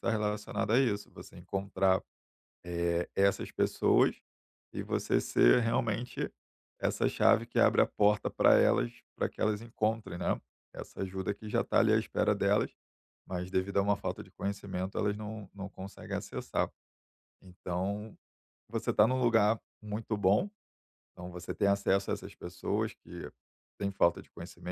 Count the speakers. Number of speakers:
1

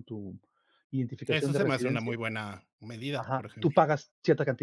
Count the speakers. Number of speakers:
2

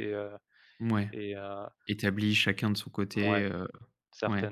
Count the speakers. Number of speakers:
2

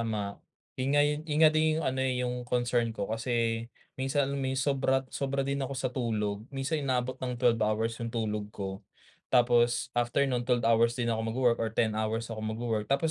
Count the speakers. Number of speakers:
1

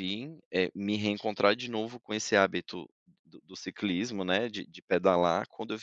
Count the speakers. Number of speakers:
1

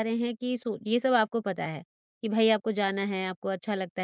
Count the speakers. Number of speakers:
1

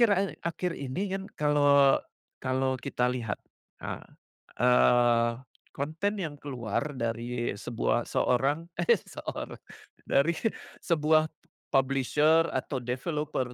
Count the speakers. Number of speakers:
1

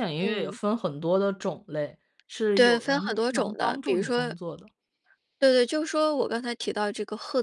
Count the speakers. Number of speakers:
2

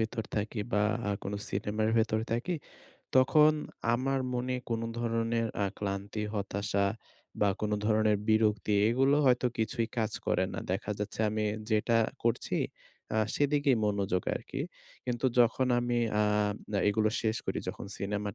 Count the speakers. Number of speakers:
1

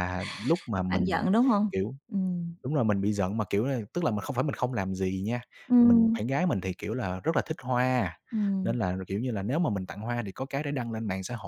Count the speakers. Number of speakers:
2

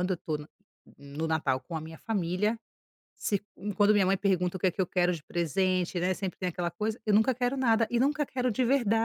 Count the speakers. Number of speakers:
1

